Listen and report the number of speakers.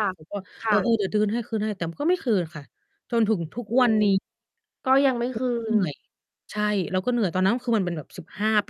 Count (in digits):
2